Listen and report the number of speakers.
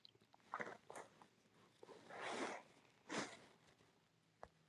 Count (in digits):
0